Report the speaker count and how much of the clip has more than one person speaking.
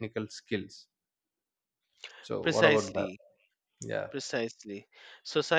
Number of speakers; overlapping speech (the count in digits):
2, about 12%